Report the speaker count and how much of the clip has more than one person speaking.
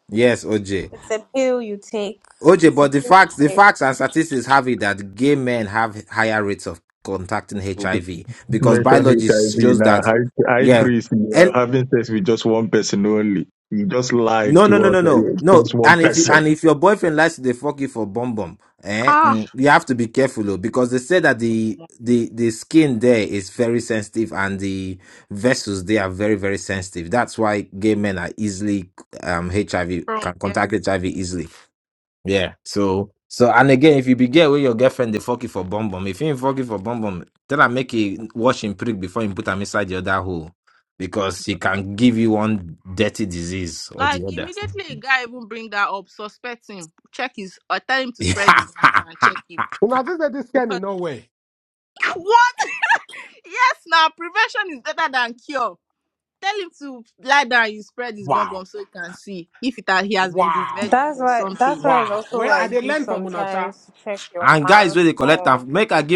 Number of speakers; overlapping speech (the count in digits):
5, about 18%